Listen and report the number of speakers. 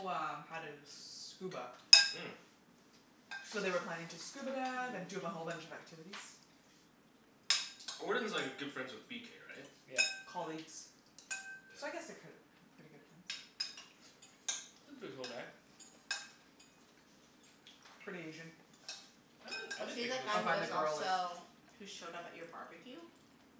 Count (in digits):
4